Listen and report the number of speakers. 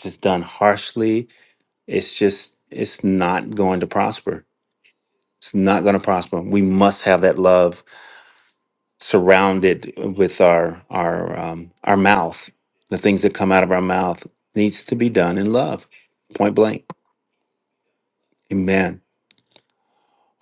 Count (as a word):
one